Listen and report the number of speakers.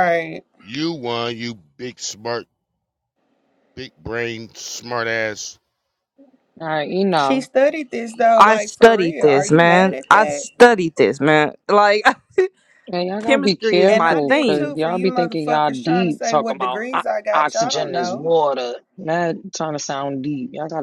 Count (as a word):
four